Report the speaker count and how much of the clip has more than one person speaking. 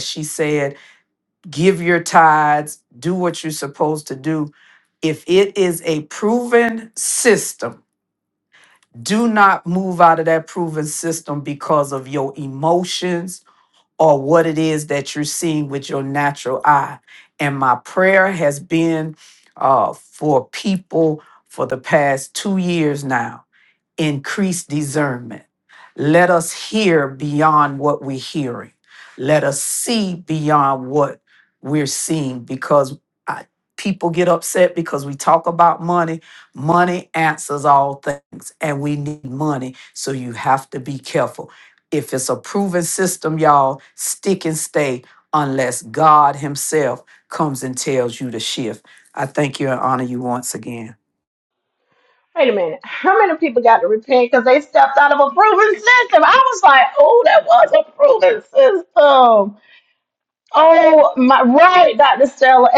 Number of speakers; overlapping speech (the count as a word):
two, no overlap